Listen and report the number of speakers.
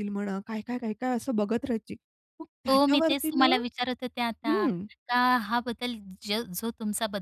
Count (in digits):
2